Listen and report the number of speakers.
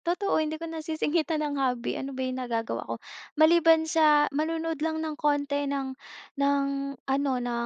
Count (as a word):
one